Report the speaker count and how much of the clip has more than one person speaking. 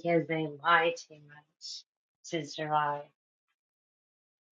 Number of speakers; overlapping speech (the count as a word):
one, no overlap